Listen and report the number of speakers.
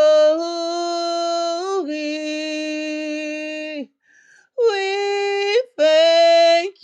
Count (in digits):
1